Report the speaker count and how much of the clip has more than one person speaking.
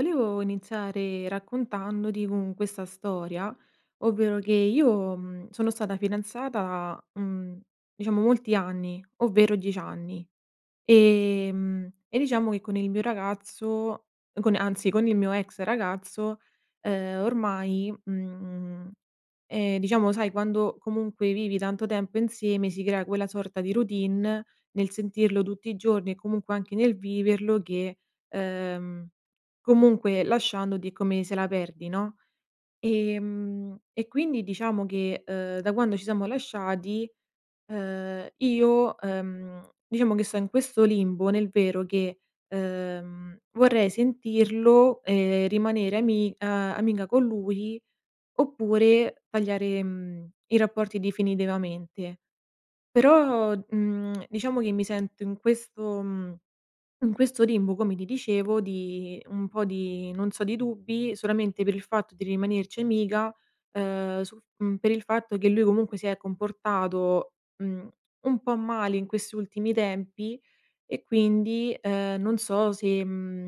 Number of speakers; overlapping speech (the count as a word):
one, no overlap